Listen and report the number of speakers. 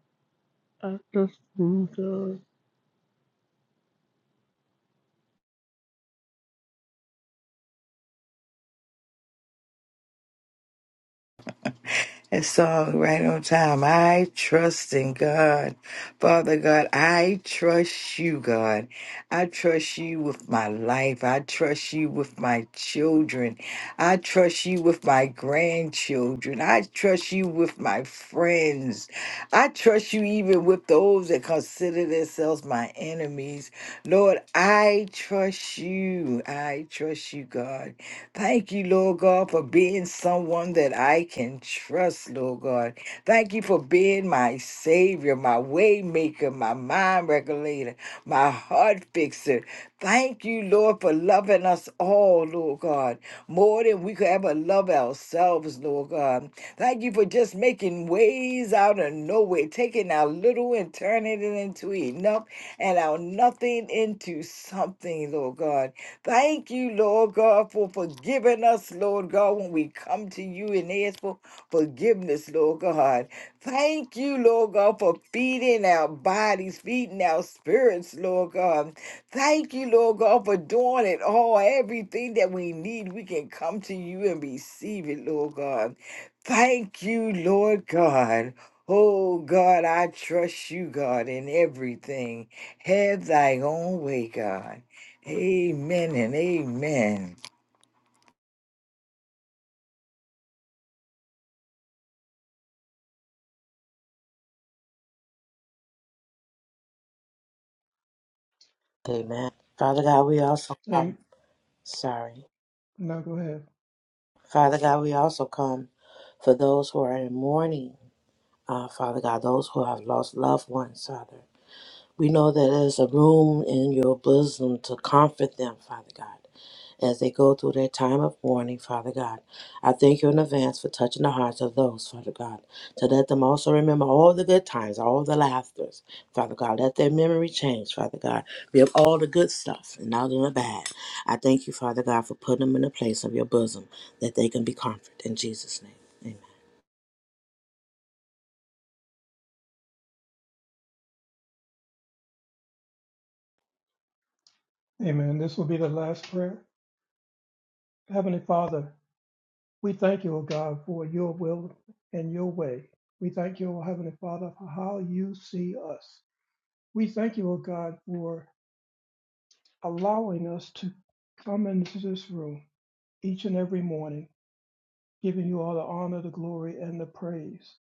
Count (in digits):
4